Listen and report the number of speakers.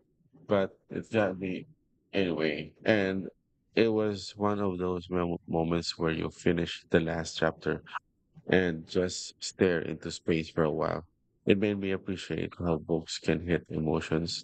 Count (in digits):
1